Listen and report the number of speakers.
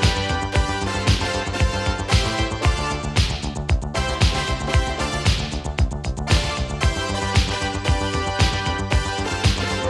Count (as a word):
zero